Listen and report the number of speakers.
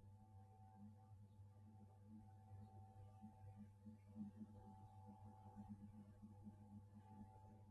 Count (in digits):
0